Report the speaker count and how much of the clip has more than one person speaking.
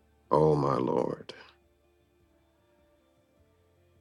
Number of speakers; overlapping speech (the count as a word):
one, no overlap